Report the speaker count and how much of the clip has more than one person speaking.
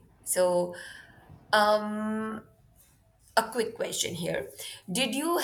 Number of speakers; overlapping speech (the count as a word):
one, no overlap